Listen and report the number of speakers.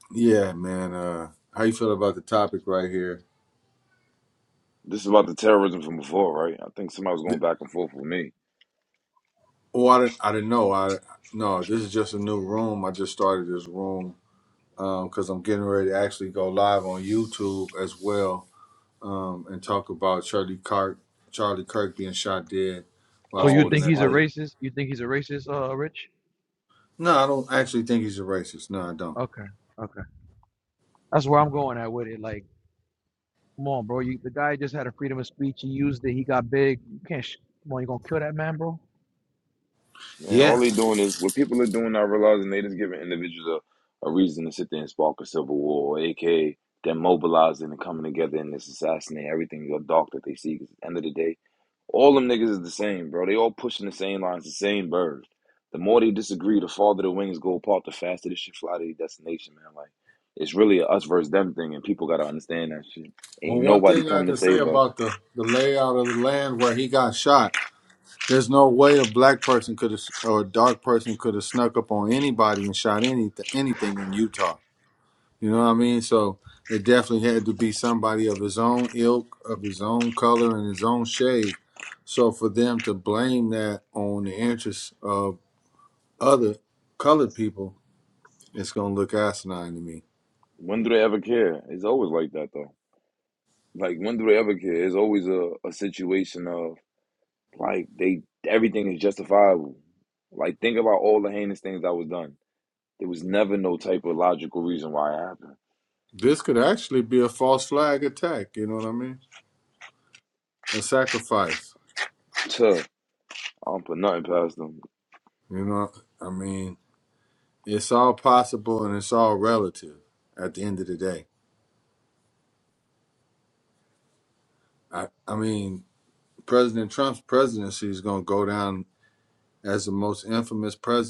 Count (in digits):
3